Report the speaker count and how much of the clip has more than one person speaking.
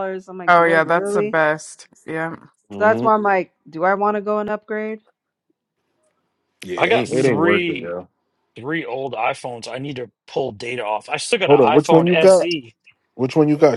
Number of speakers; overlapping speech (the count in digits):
4, about 24%